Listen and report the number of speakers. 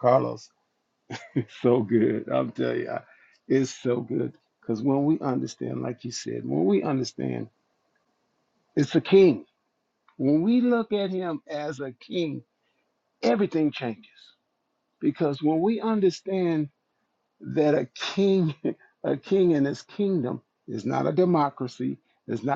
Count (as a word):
one